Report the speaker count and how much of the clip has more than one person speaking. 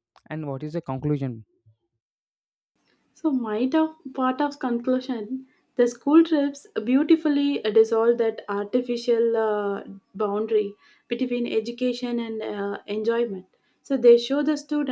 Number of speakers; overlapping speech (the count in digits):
2, no overlap